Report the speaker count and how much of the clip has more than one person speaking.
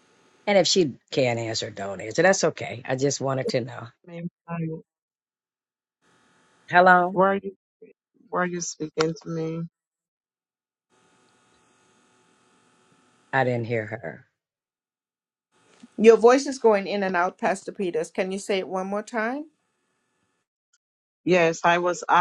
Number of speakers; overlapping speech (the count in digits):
3, under 1%